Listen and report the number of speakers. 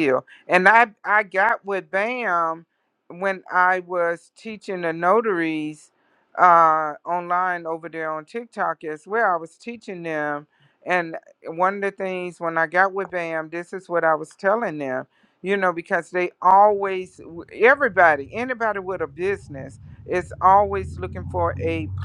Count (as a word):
one